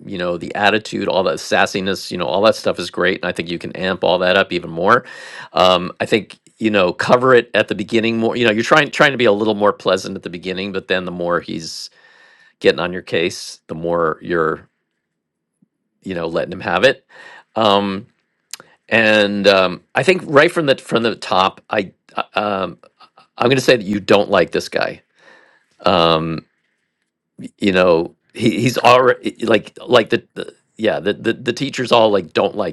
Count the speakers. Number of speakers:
1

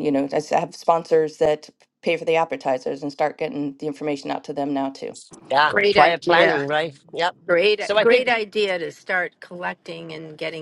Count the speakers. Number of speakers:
3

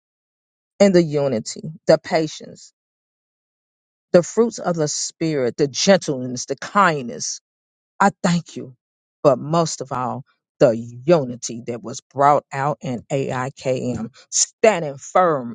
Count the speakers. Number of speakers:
1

